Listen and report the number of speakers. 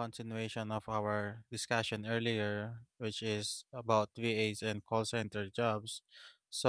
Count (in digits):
1